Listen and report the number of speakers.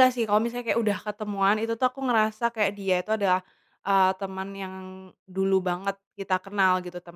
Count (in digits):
1